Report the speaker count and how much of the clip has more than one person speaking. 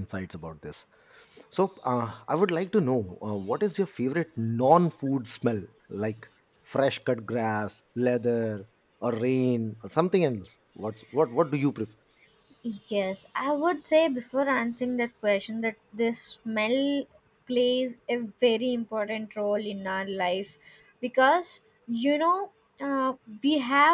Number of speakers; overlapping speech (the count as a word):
two, no overlap